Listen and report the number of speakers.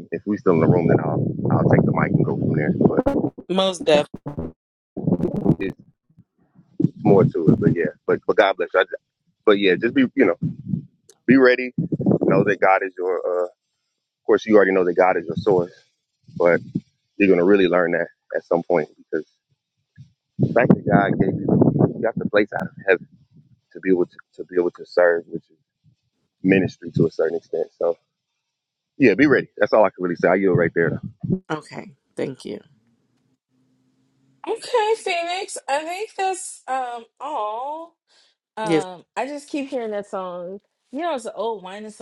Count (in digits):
3